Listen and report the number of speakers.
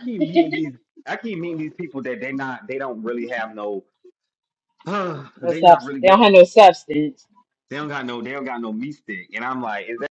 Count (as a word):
two